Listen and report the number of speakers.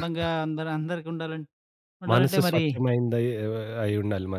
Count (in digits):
2